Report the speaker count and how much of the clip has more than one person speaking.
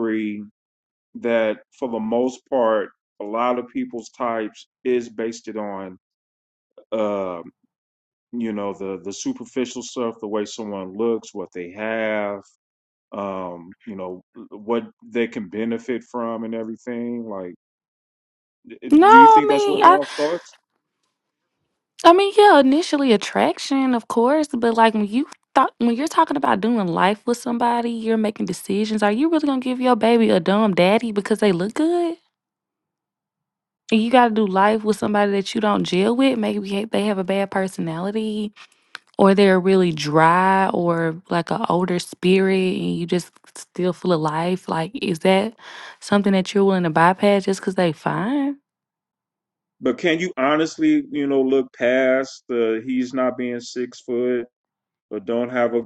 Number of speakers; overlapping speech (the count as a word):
two, about 2%